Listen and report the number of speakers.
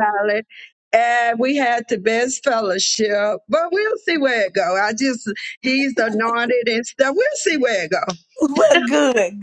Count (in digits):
2